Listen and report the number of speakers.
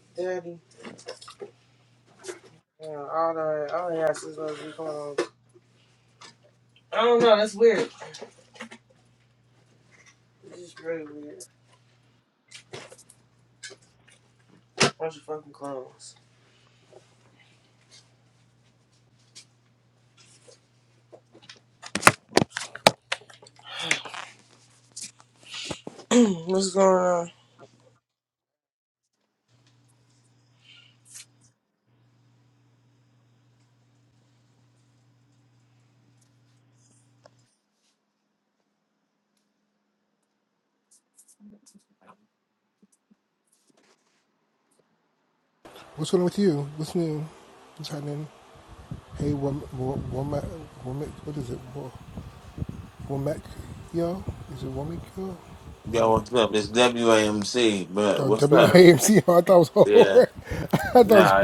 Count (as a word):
three